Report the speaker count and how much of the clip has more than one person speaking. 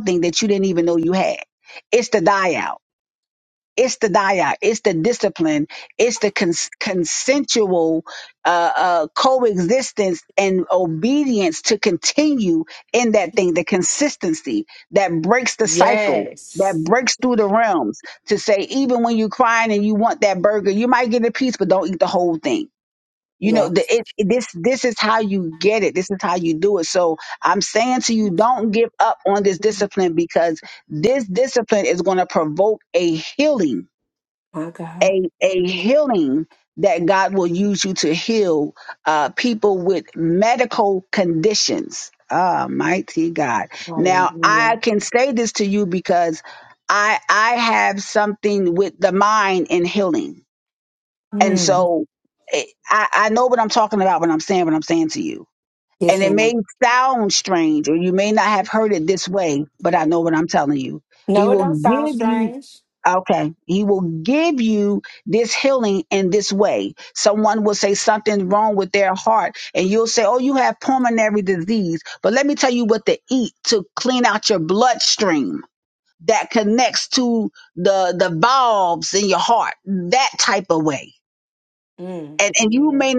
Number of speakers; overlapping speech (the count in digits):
2, about 6%